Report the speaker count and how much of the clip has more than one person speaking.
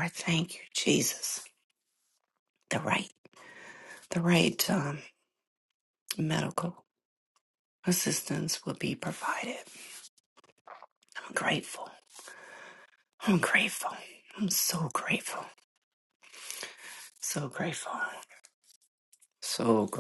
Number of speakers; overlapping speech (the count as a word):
one, no overlap